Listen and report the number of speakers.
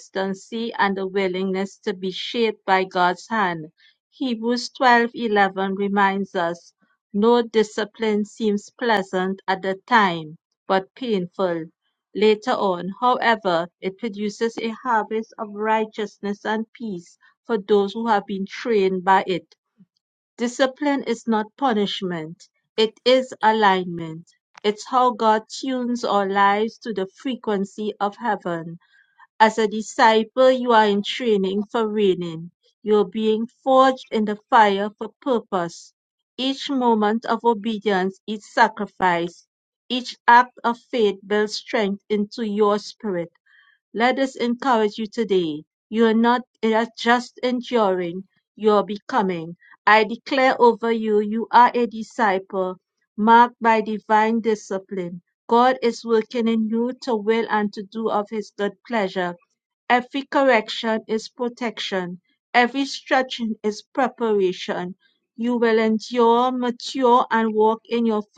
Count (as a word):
one